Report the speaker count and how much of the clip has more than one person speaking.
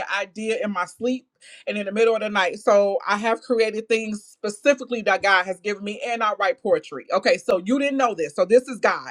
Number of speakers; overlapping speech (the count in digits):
1, no overlap